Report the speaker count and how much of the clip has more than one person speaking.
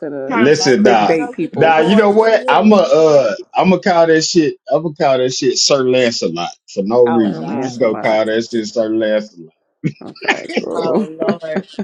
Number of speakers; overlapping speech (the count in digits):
3, about 38%